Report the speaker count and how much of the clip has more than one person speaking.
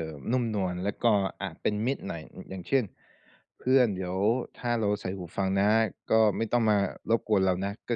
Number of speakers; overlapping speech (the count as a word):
one, no overlap